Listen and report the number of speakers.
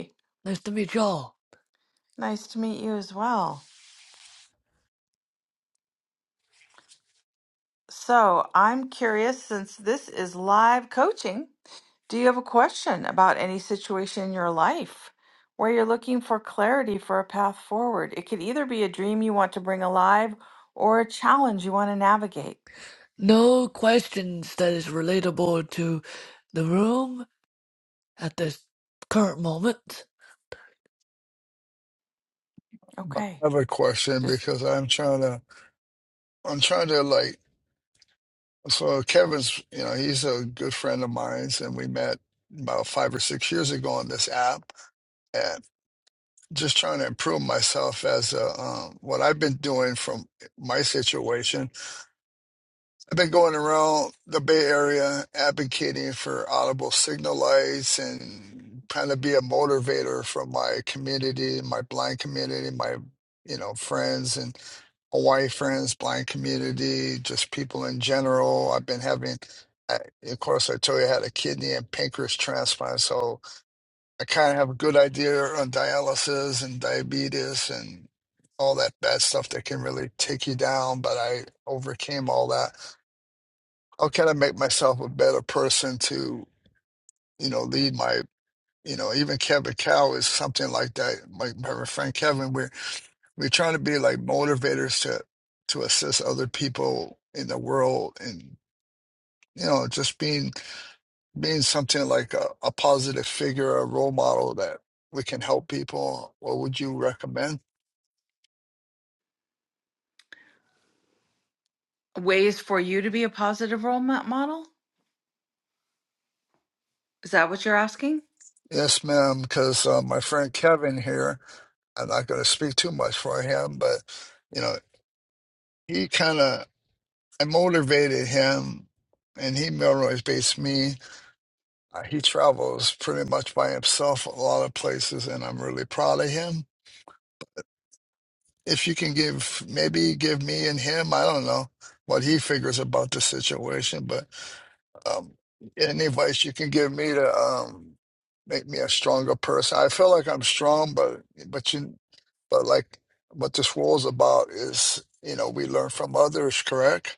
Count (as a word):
three